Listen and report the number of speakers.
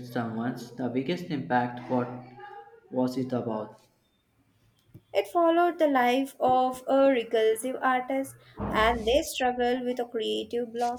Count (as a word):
two